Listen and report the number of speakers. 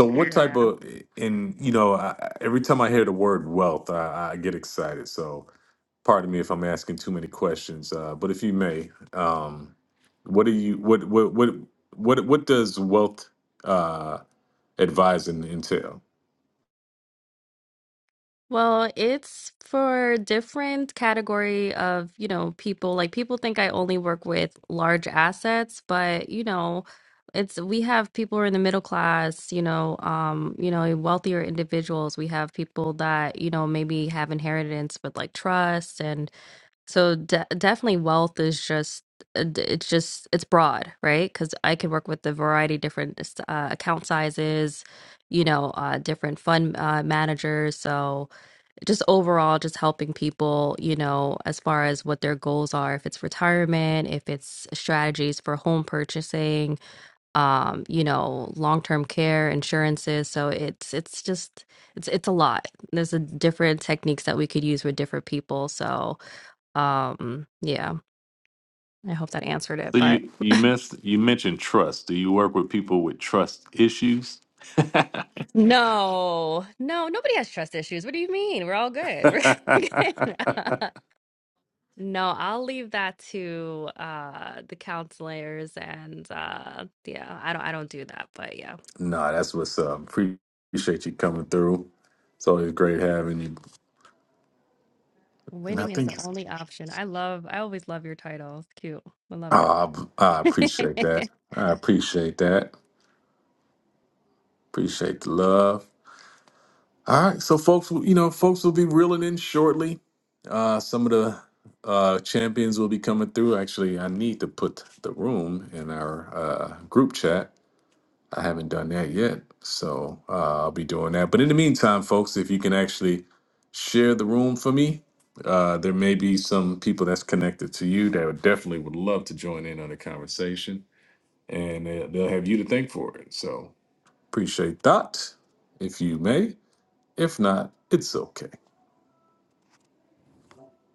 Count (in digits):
2